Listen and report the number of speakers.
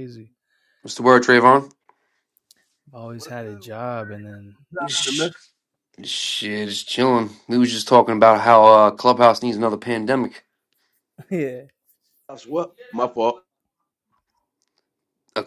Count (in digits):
3